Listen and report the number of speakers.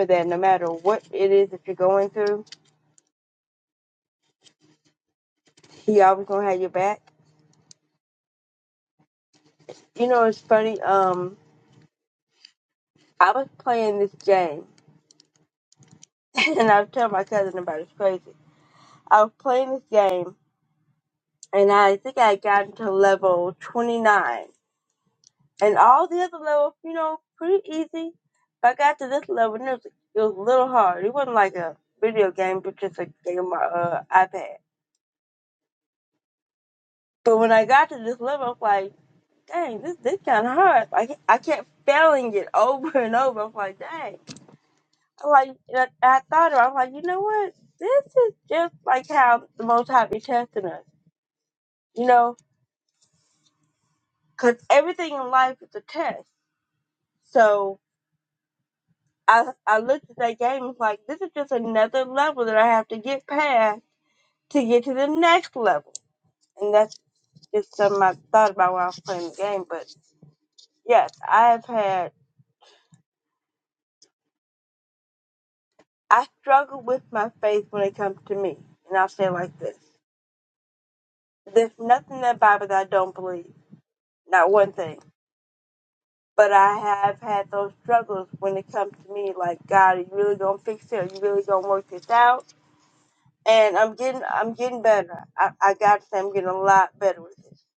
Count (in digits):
1